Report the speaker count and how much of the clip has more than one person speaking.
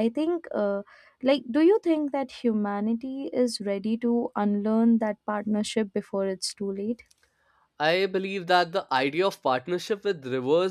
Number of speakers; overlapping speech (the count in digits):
2, no overlap